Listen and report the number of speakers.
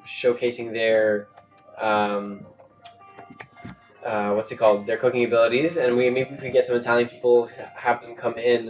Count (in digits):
1